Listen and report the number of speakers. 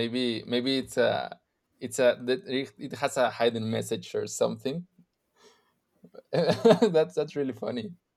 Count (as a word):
one